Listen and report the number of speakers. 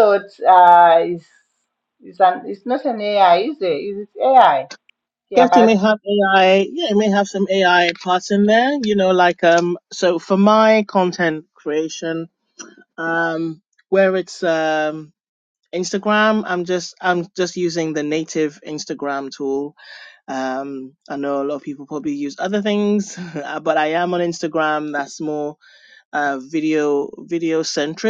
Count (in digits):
2